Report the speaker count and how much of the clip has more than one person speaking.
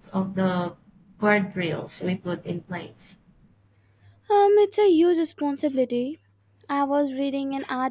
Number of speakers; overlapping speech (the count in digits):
2, no overlap